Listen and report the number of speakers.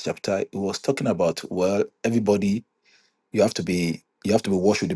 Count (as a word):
one